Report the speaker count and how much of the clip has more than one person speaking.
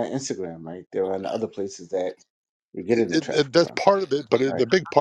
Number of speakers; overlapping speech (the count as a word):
two, about 22%